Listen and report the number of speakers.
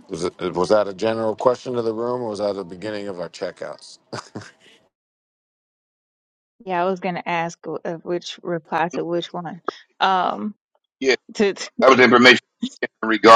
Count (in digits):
3